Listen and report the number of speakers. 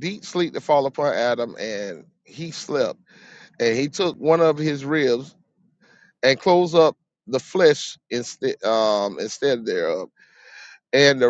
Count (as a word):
one